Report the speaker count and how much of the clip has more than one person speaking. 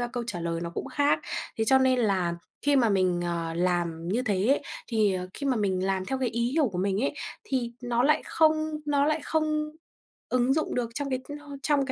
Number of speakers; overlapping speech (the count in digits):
1, no overlap